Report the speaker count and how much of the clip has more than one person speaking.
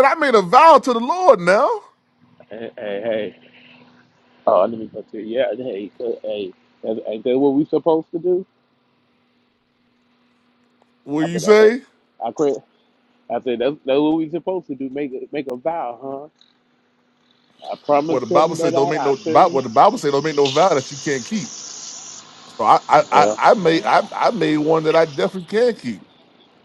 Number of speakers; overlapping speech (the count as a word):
two, about 9%